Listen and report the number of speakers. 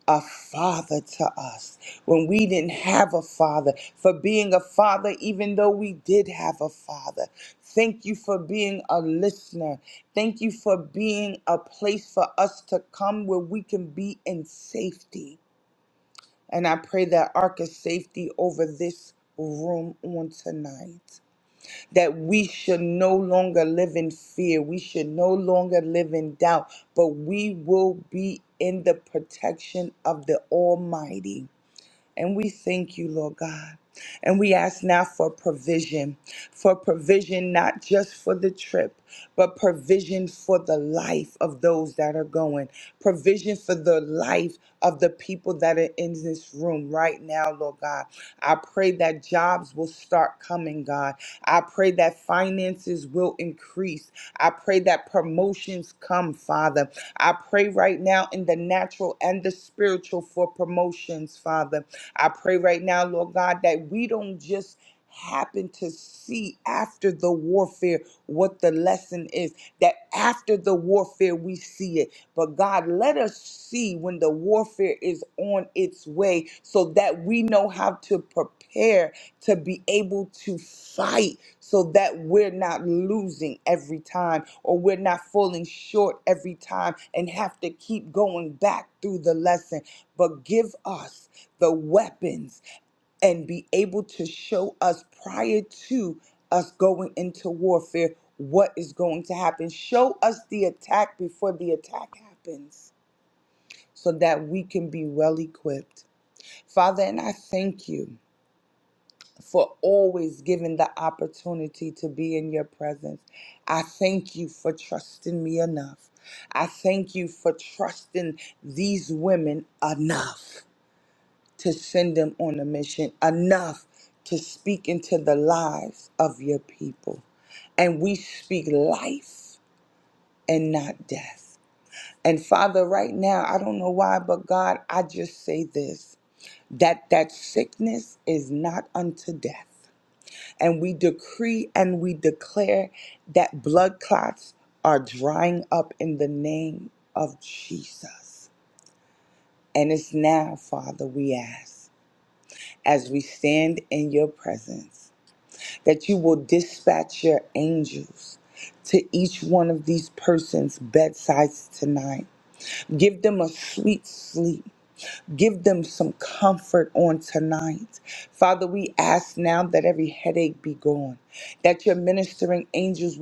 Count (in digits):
1